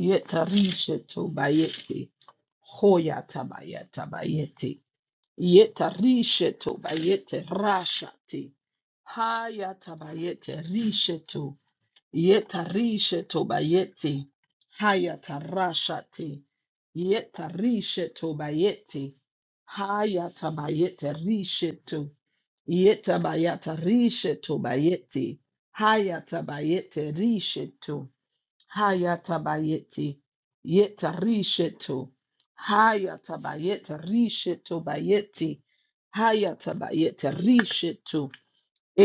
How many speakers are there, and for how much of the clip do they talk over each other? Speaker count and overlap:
1, no overlap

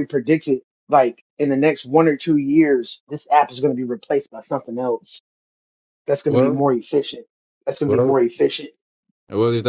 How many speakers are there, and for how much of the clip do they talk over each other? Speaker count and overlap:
2, about 6%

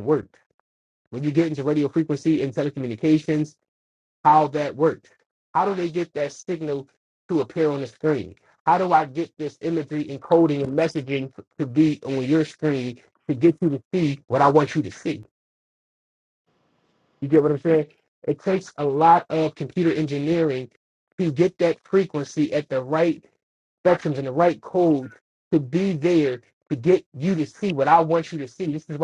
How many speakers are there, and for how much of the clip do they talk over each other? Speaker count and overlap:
1, no overlap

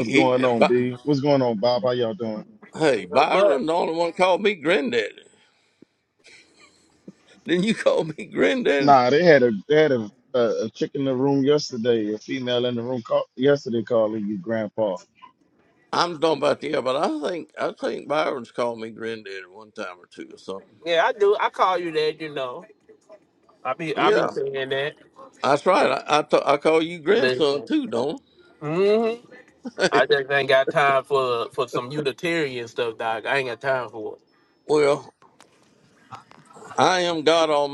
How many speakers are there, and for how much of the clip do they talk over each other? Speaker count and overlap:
3, about 7%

